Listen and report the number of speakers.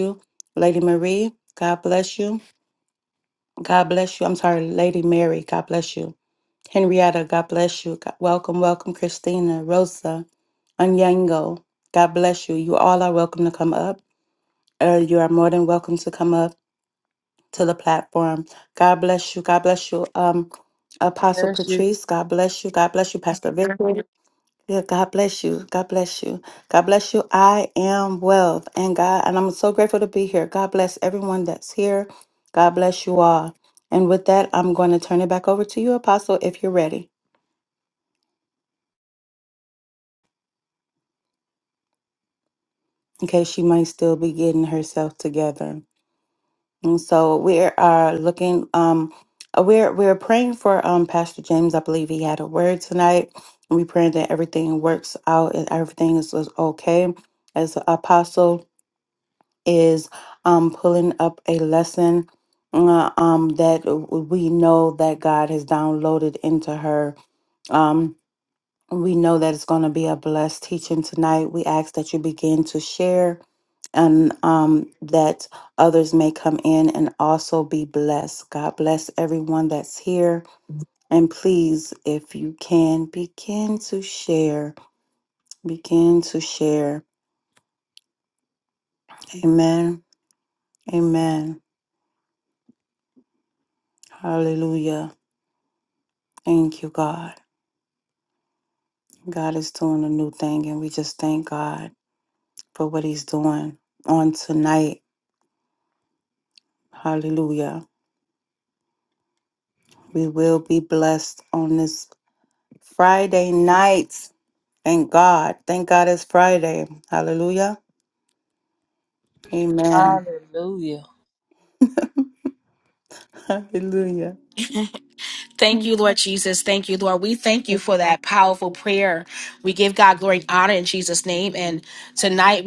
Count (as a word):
three